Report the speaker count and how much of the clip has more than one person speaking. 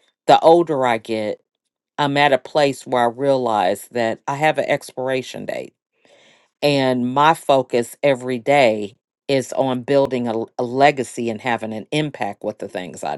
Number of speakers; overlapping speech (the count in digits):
1, no overlap